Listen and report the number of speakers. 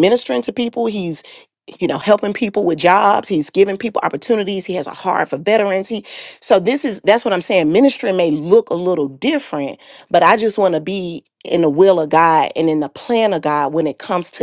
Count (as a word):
one